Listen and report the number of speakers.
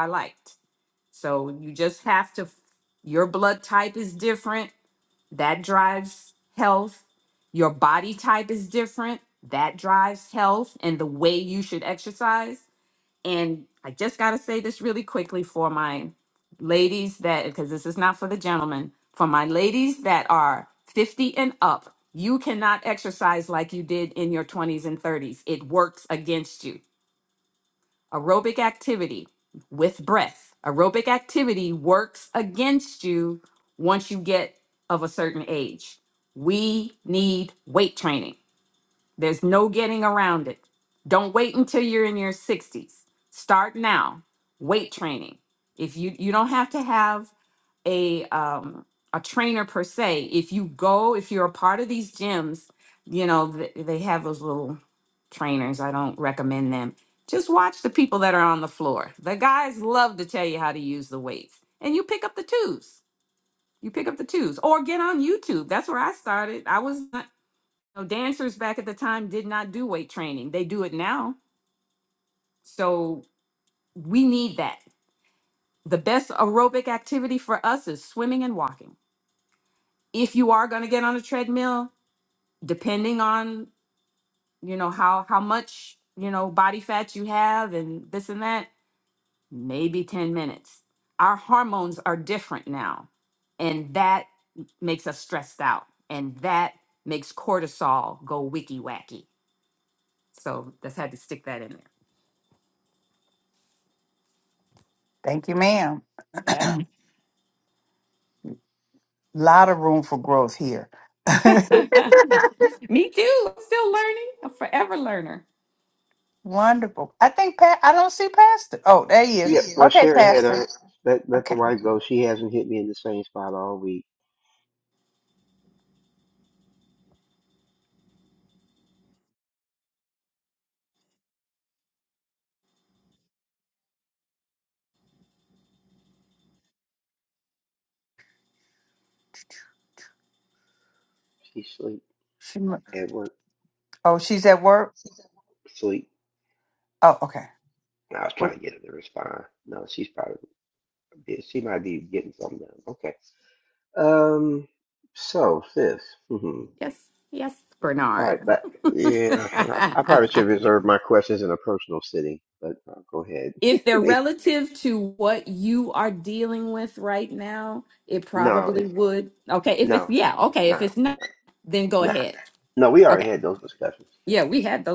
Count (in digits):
3